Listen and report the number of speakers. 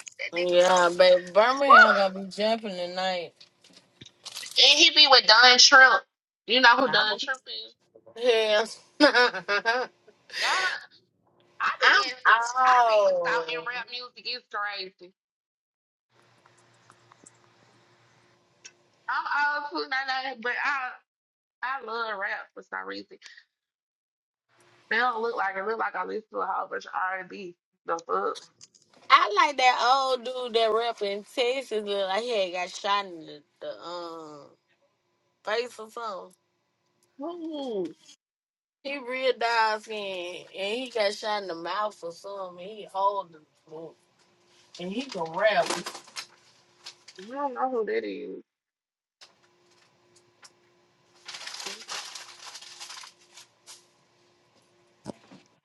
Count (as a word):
two